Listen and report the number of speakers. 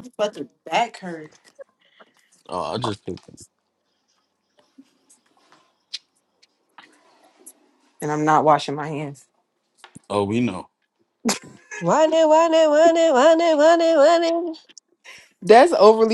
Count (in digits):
3